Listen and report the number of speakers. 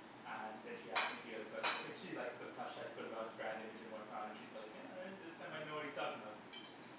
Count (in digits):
1